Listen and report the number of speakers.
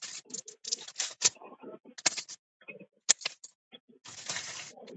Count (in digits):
0